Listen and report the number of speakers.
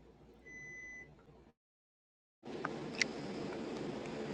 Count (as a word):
zero